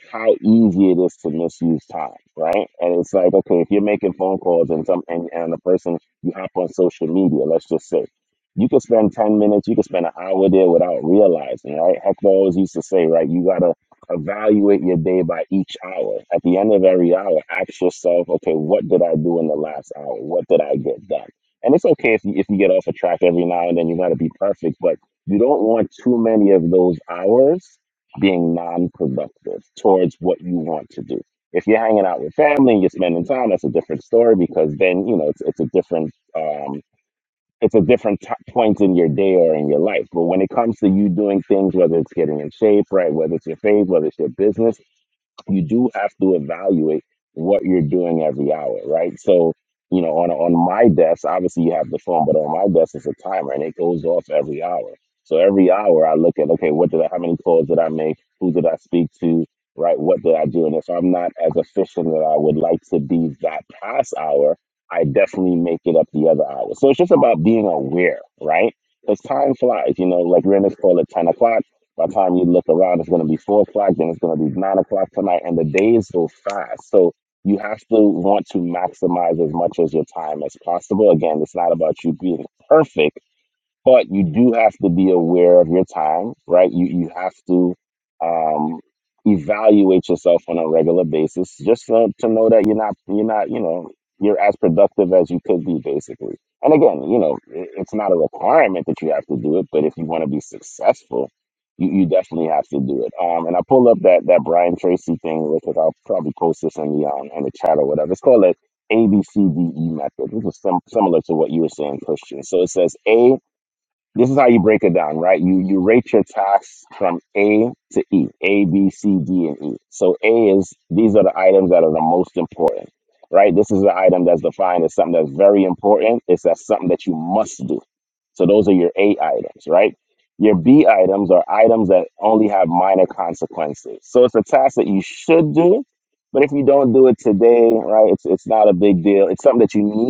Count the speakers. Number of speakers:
1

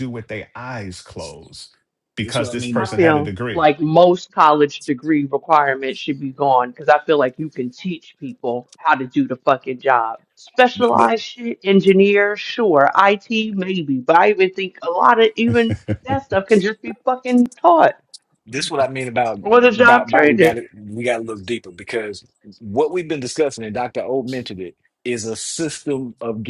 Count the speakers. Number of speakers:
3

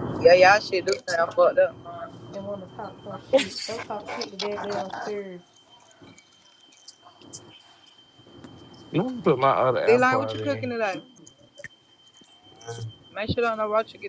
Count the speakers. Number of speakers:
3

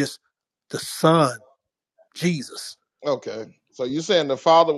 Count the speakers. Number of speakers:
2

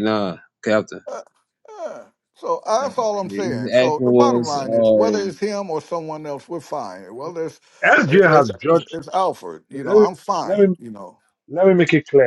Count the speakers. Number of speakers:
3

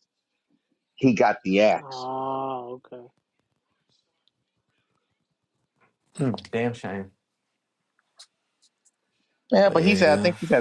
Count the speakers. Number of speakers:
3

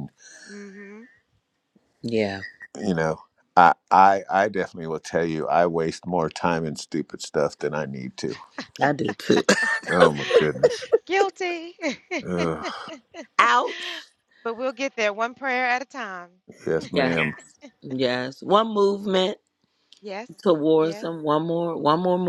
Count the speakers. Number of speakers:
3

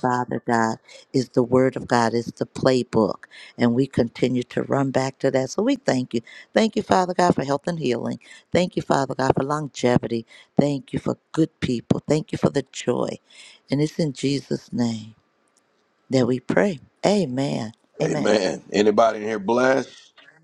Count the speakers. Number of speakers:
2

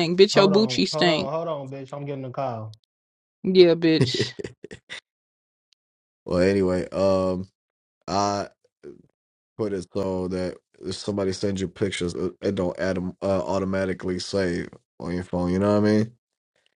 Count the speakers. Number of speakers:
3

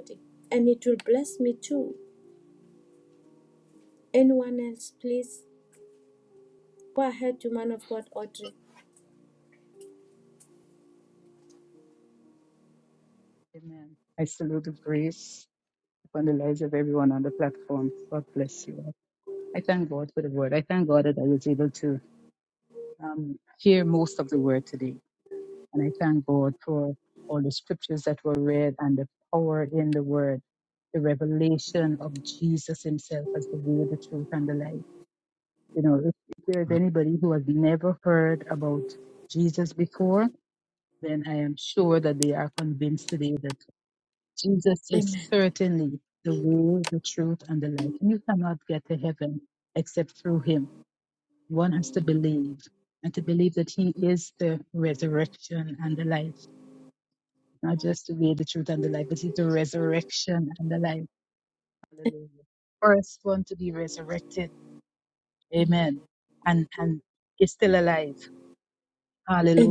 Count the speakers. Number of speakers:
2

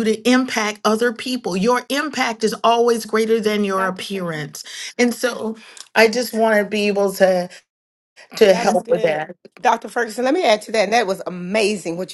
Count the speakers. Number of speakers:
2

